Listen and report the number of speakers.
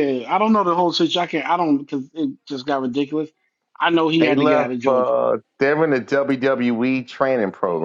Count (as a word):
two